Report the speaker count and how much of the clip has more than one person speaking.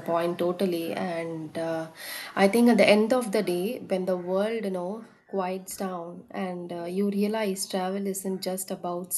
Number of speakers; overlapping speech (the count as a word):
one, no overlap